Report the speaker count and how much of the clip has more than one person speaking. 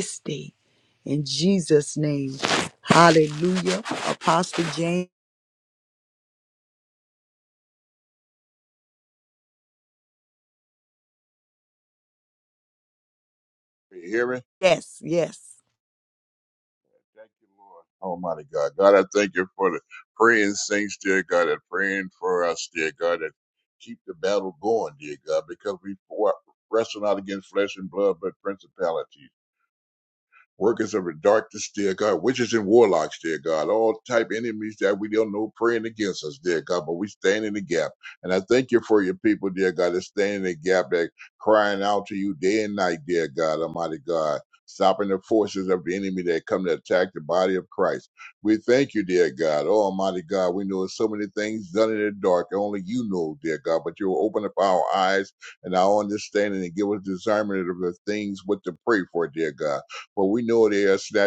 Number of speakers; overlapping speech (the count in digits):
2, no overlap